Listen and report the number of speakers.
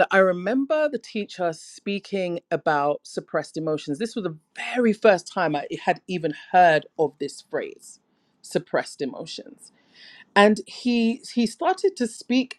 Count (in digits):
1